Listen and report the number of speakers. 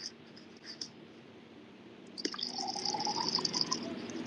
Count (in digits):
0